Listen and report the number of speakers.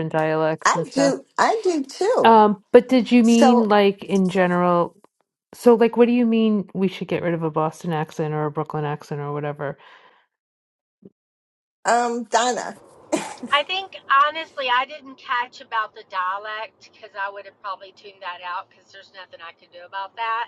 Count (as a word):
three